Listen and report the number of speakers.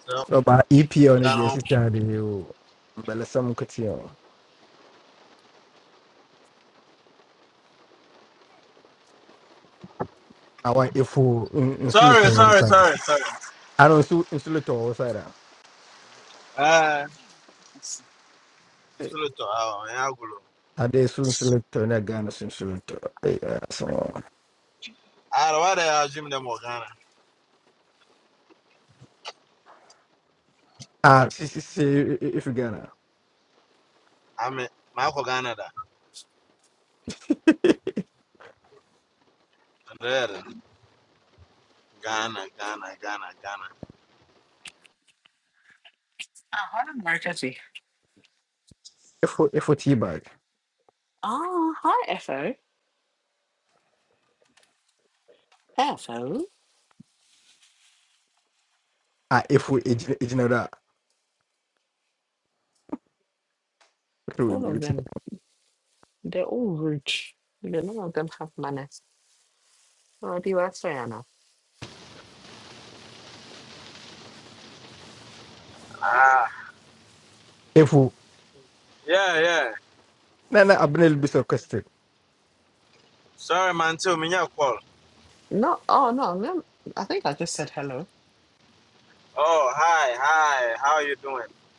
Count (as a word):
three